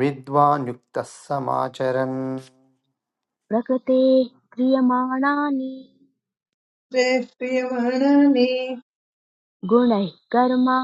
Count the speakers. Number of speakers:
3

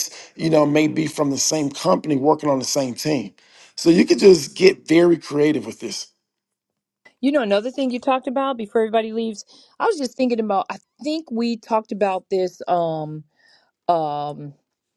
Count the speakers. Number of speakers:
2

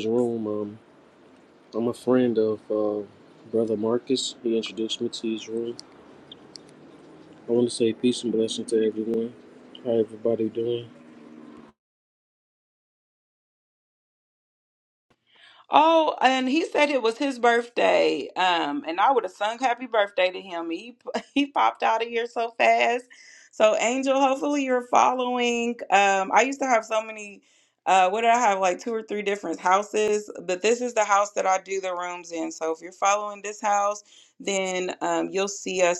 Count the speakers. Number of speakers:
2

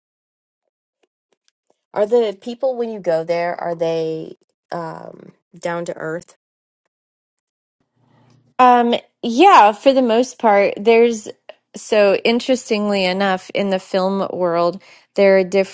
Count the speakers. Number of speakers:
2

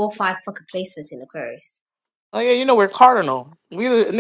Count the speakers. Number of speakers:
2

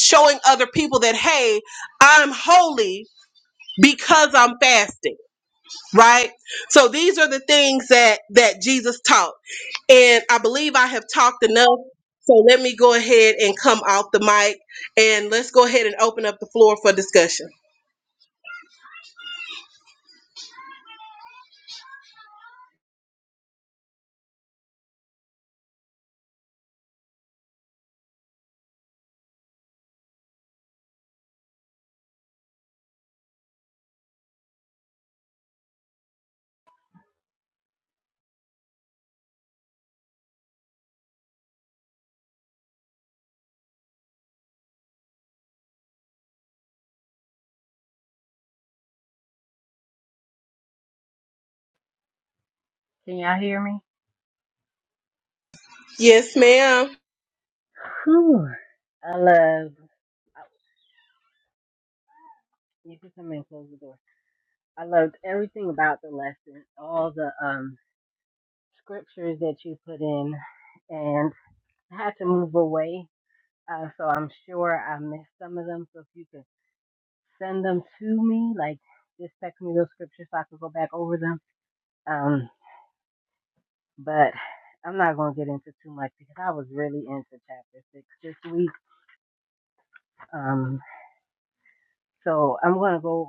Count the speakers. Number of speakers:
2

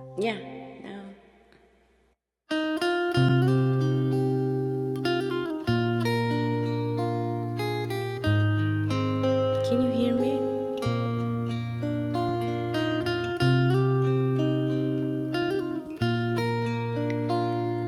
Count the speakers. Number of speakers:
1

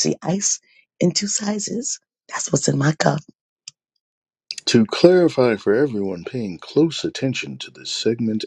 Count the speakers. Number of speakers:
2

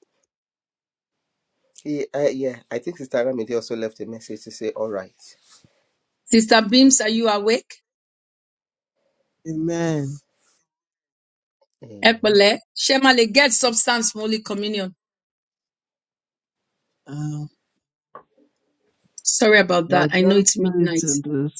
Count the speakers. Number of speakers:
3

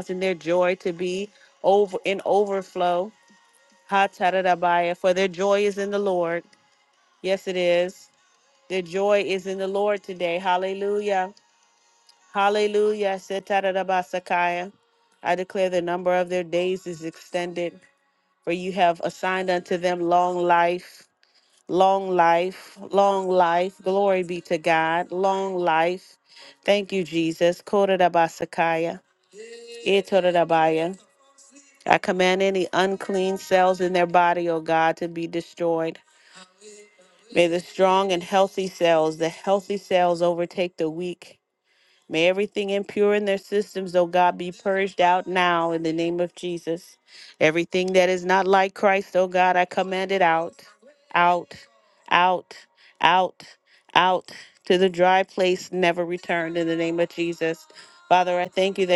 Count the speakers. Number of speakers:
1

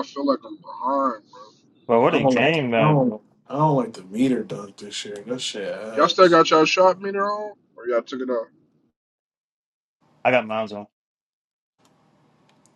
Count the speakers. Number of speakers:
3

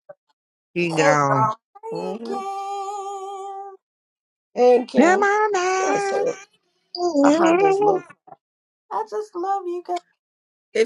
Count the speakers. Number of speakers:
3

